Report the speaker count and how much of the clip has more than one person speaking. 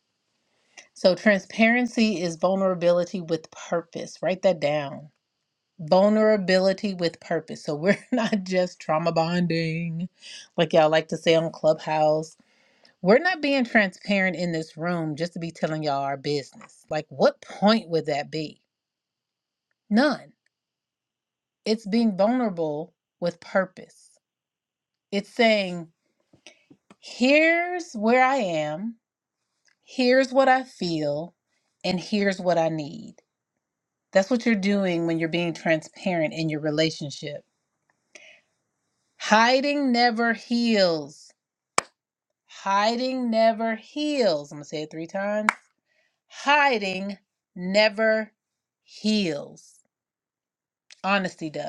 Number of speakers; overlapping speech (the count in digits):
1, no overlap